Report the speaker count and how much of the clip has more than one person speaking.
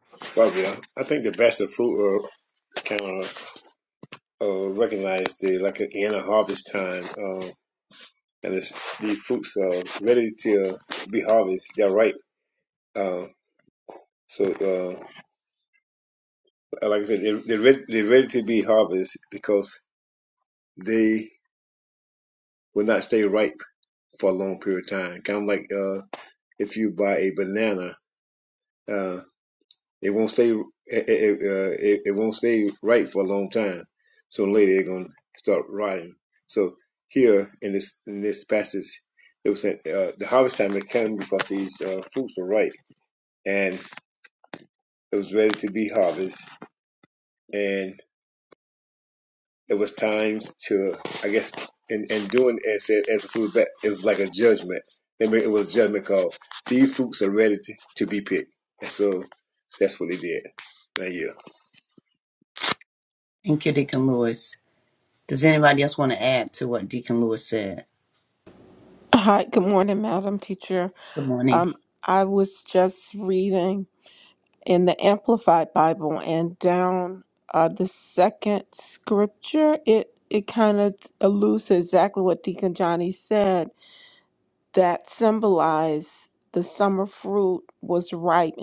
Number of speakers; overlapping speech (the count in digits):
3, under 1%